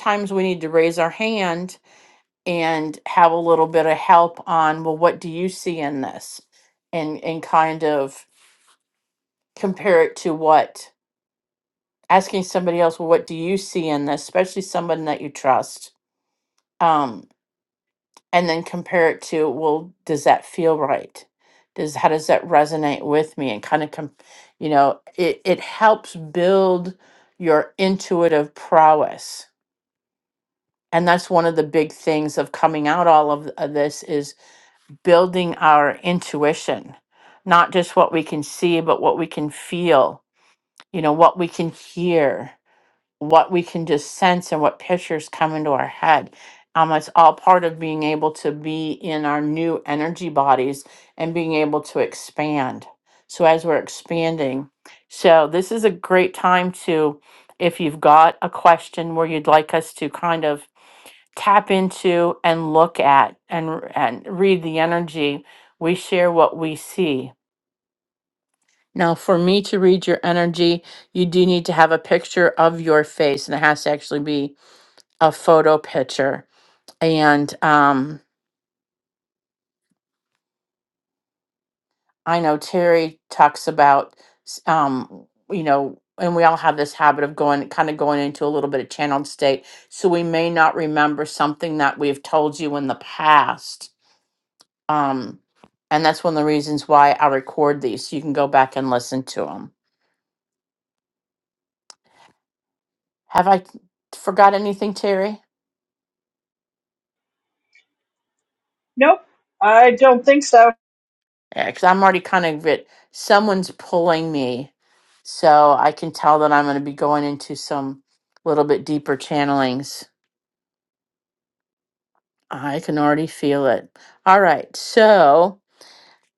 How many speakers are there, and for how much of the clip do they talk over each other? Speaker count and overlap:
two, no overlap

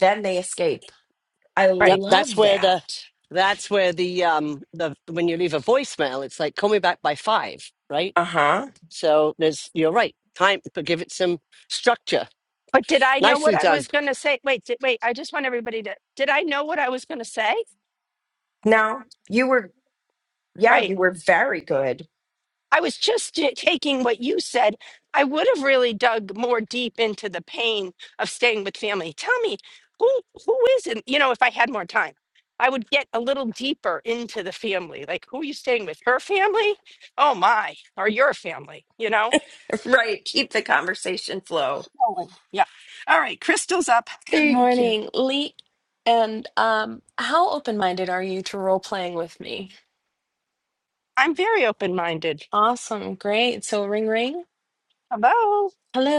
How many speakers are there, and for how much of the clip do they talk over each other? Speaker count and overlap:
four, about 4%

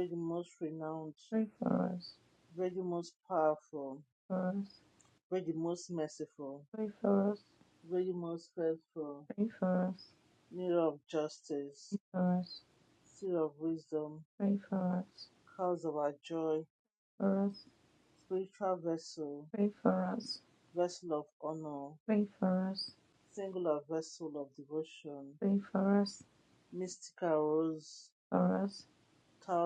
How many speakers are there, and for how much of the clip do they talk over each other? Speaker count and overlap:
two, no overlap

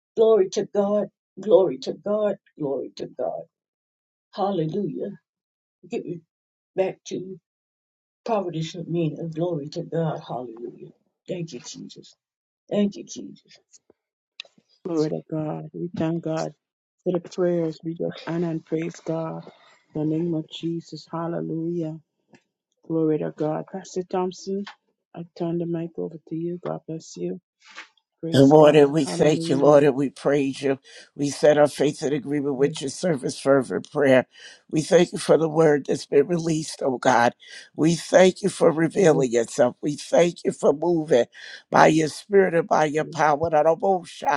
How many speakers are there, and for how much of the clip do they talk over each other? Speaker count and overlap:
three, about 4%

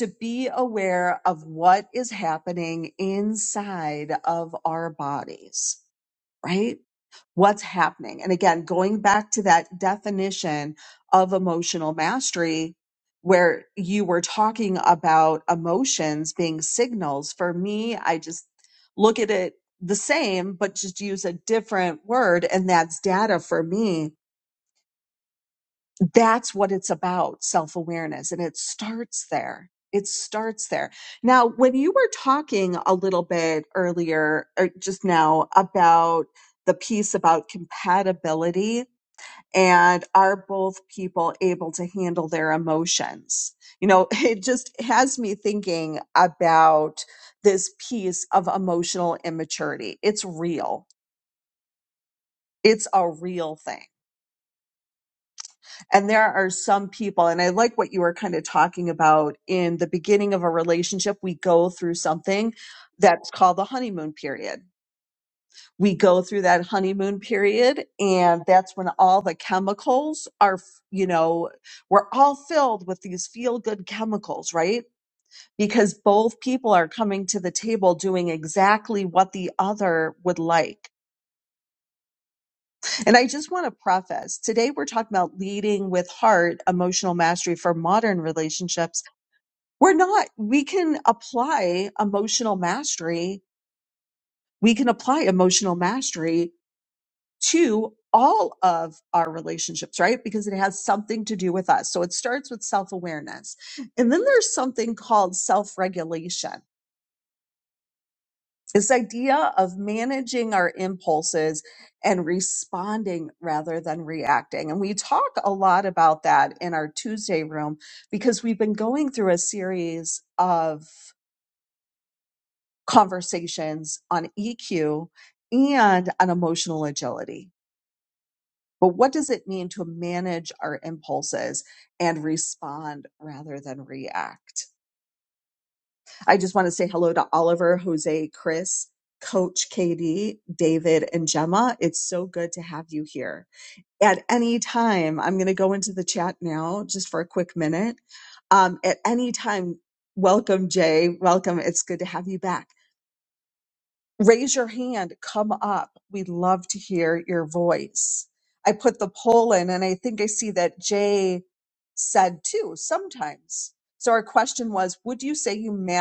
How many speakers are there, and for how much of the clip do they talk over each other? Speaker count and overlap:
one, no overlap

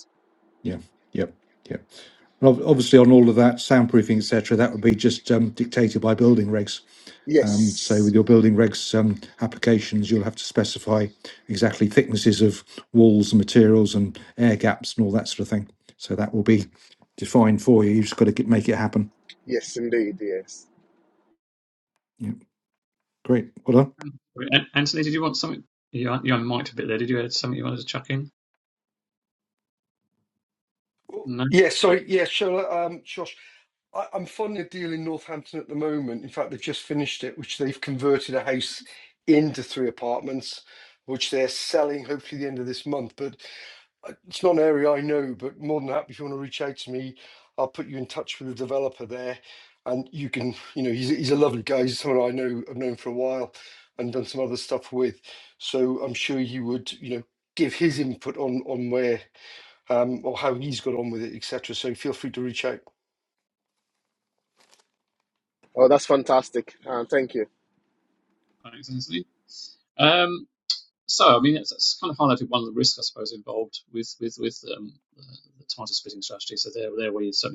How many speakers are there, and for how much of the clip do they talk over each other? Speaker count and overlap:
four, under 1%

